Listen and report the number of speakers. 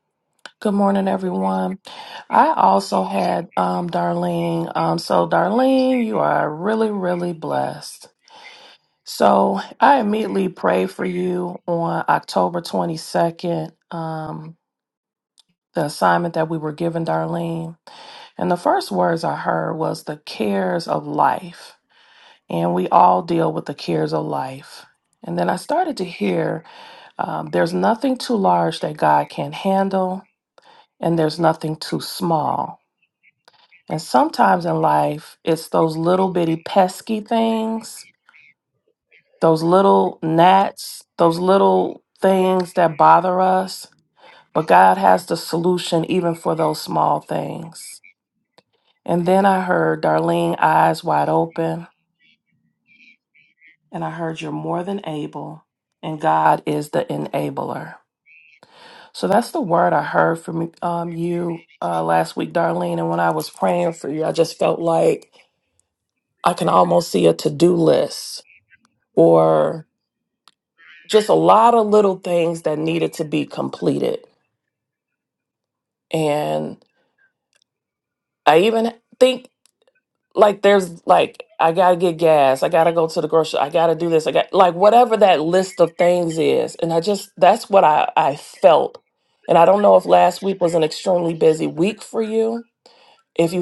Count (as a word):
one